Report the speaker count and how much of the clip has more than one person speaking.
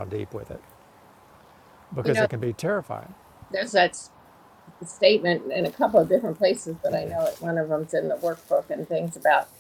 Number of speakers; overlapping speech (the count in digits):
2, about 2%